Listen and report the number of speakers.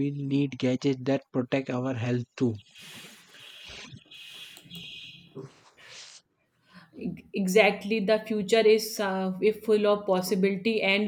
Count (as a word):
two